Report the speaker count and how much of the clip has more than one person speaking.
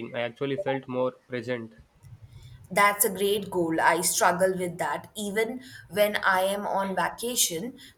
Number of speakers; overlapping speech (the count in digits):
2, no overlap